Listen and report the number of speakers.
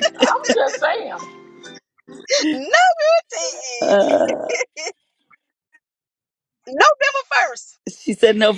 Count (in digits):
3